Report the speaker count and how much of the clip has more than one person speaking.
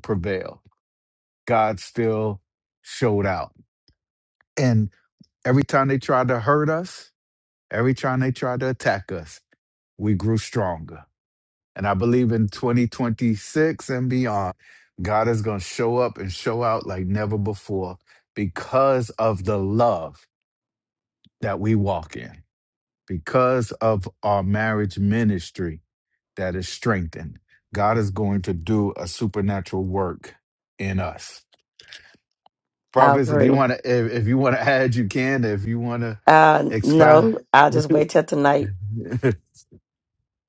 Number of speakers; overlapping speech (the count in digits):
2, about 3%